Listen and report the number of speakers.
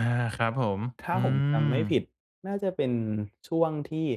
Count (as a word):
two